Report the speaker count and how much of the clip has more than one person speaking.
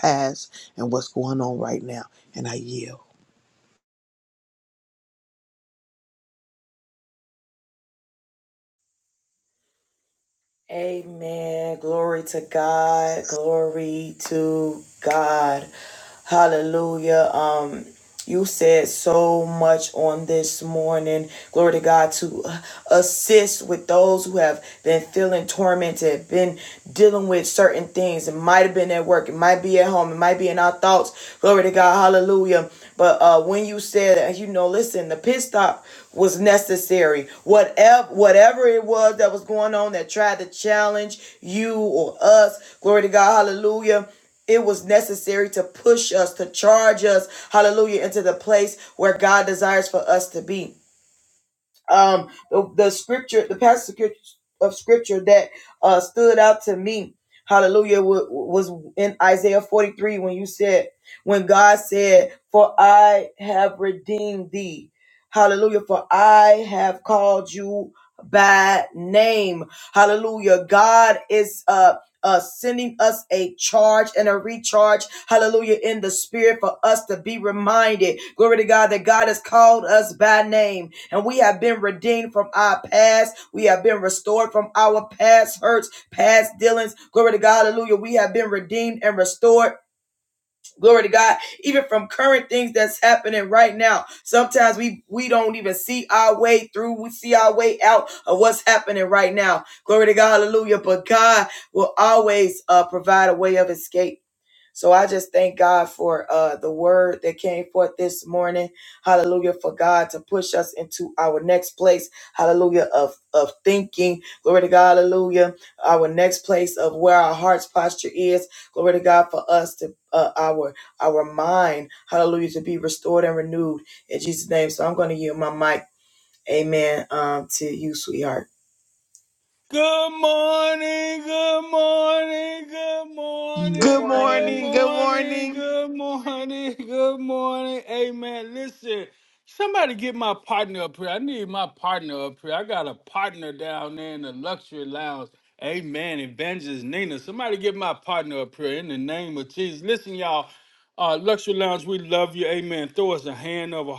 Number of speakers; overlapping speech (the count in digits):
3, about 1%